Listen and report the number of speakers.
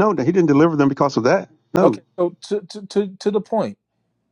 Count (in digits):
2